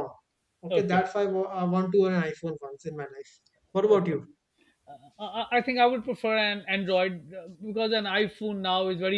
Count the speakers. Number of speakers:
2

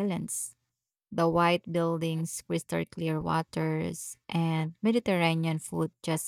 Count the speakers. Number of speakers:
1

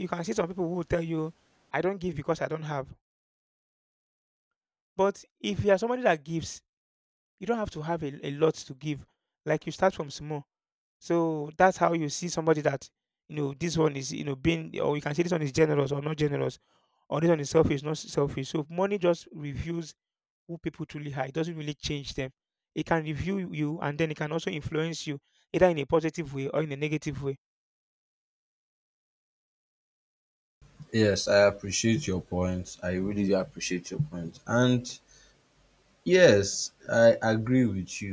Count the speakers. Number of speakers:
2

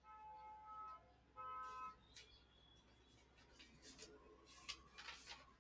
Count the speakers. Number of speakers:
0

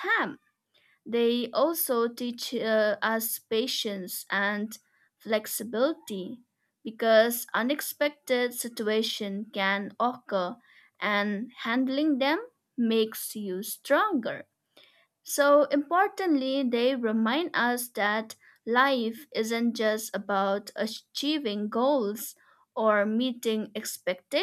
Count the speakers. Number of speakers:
1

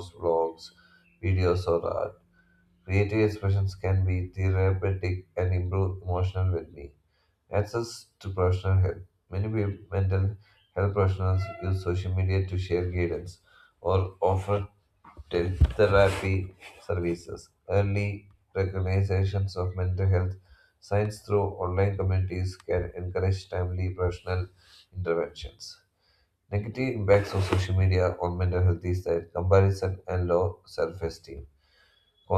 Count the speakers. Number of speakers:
1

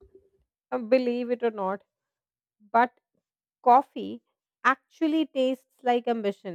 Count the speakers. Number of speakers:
1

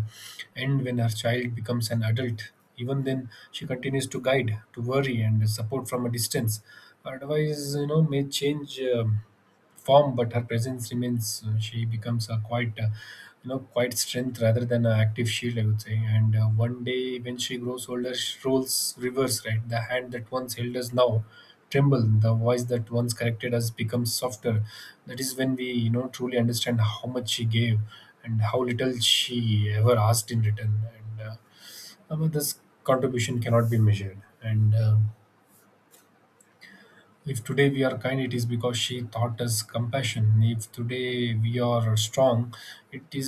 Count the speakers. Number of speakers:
1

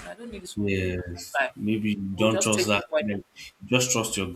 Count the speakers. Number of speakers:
2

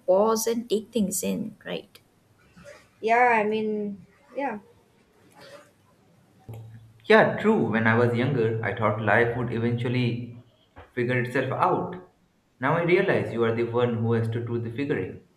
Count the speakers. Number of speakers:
3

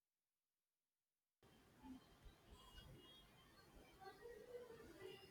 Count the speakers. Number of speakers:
0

